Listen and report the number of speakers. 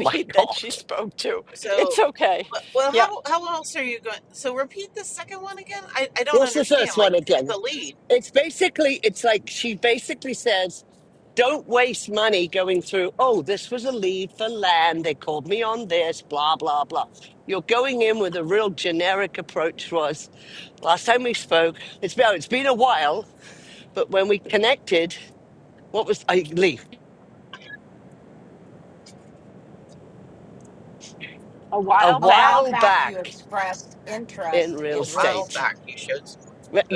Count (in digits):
4